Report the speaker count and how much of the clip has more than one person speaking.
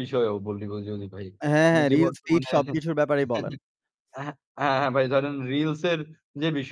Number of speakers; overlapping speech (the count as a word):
two, about 12%